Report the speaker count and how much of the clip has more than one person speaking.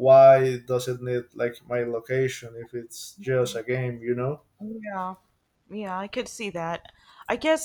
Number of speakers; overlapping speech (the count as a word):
two, no overlap